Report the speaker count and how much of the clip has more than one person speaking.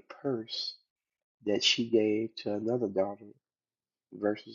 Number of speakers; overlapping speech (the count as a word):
one, no overlap